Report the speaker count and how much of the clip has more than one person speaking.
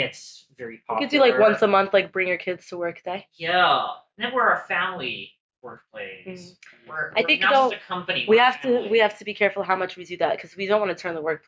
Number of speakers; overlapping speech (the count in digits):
2, about 19%